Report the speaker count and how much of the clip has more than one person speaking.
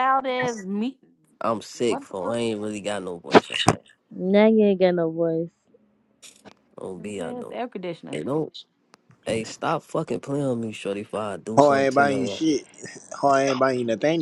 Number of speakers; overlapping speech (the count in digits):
4, about 12%